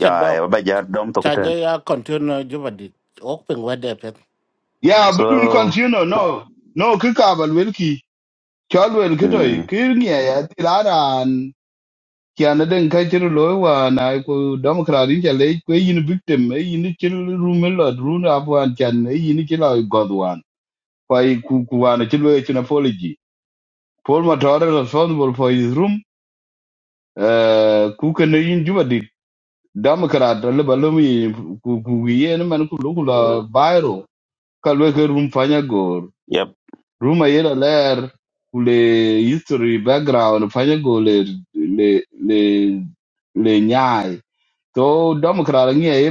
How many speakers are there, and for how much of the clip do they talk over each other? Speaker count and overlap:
3, about 3%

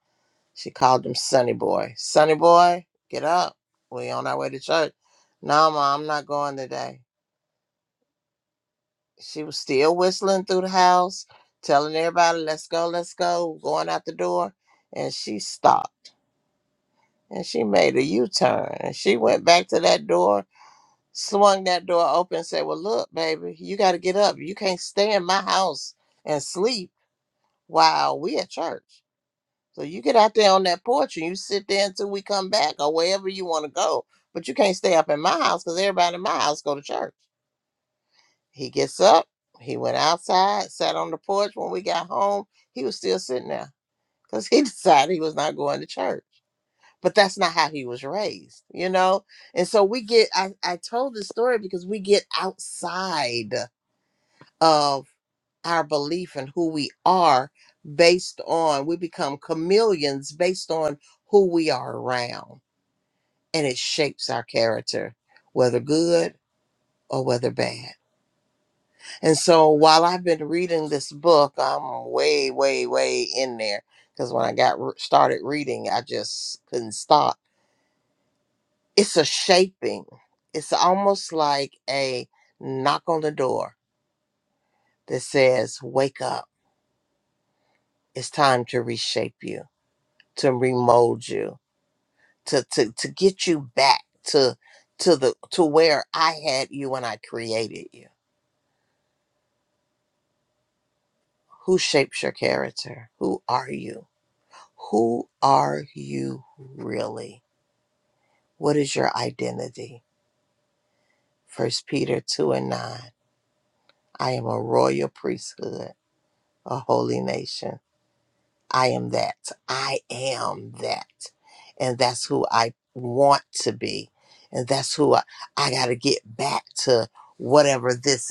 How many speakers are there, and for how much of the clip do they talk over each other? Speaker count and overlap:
1, no overlap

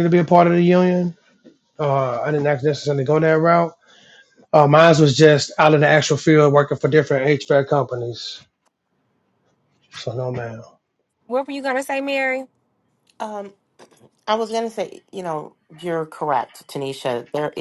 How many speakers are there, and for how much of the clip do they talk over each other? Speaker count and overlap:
3, no overlap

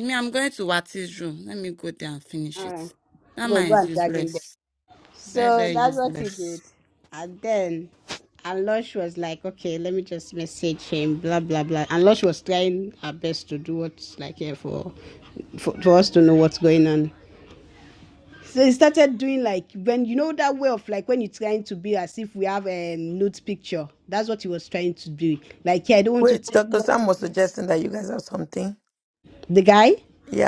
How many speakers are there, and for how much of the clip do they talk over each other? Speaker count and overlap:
3, about 9%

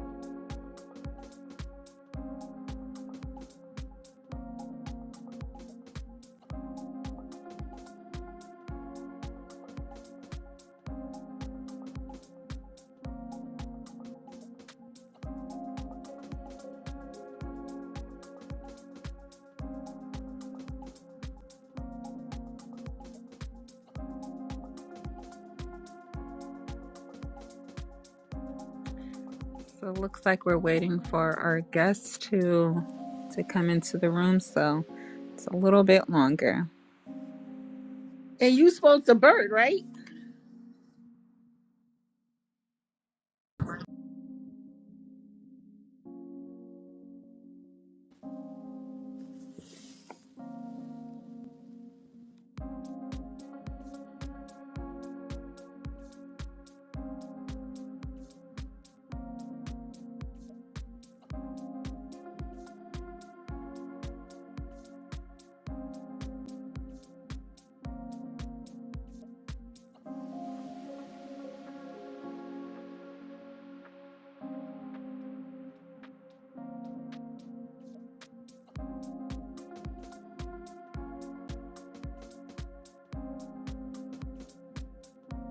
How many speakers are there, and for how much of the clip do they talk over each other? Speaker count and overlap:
2, no overlap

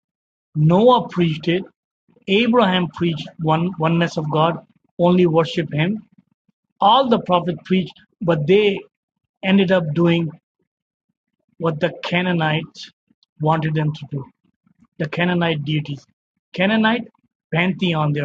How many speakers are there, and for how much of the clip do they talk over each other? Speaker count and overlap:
1, no overlap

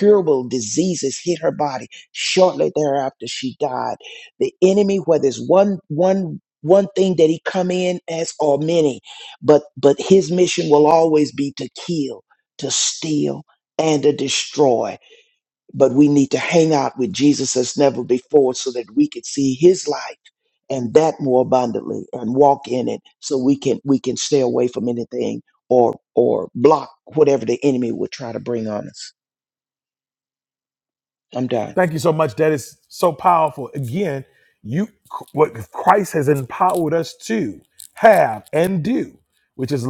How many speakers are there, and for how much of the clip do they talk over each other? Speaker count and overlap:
2, no overlap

